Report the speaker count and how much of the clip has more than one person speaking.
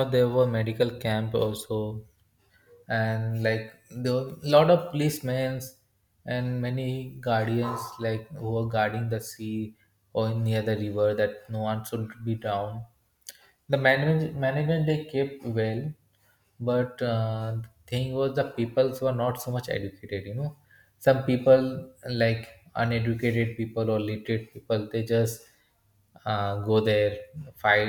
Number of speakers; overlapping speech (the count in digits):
1, no overlap